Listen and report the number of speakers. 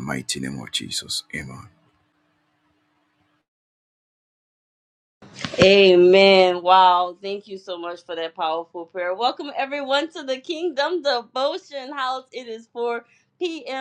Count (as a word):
two